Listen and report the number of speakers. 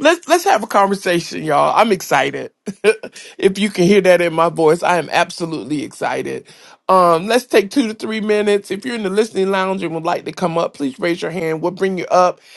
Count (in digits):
1